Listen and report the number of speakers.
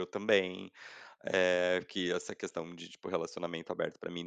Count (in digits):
1